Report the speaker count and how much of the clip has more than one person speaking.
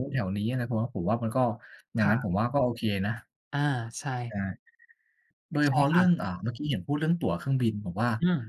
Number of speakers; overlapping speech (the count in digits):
2, about 9%